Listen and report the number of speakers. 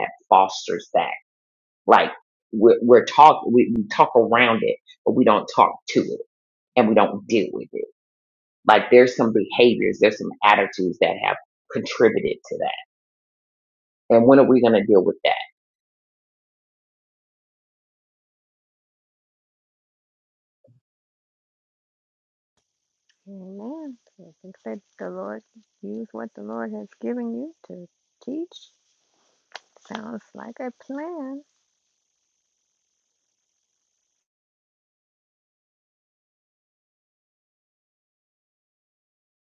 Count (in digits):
2